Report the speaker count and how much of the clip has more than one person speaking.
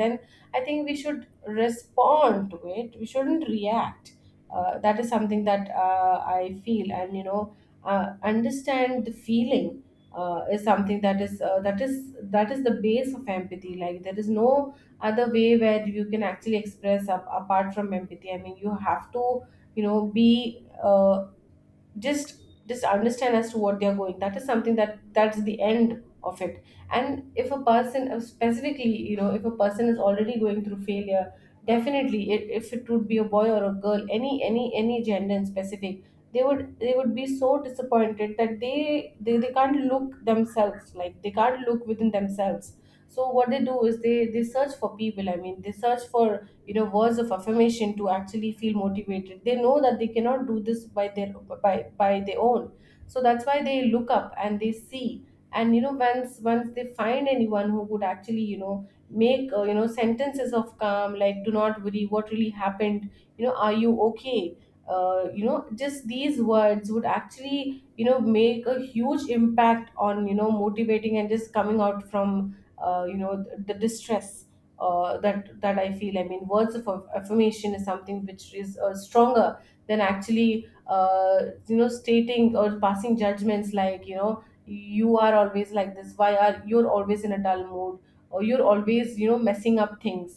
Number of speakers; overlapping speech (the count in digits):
1, no overlap